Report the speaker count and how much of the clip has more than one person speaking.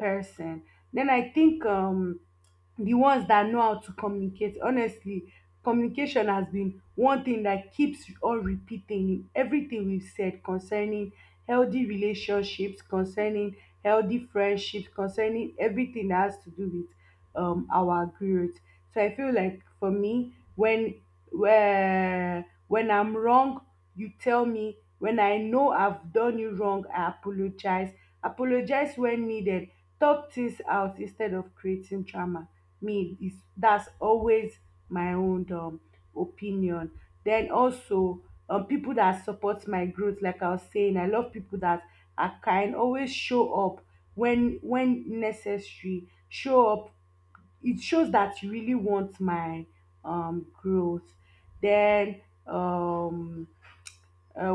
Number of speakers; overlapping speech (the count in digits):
1, no overlap